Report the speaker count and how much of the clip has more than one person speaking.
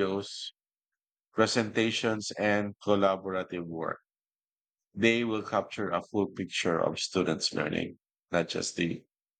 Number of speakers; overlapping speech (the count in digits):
1, no overlap